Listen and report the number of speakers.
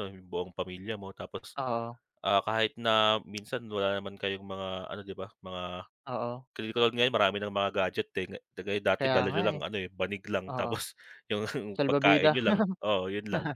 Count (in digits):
2